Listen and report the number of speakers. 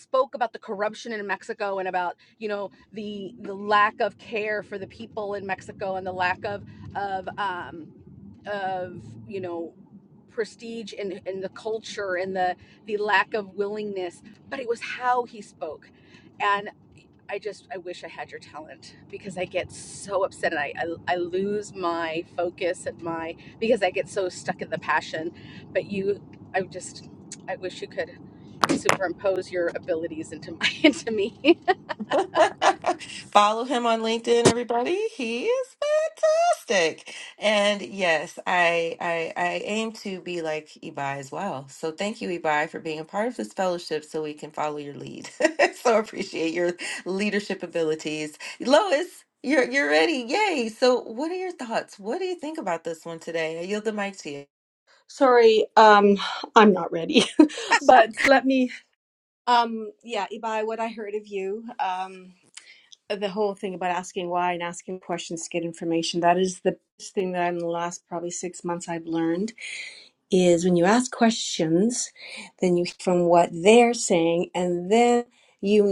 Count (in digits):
3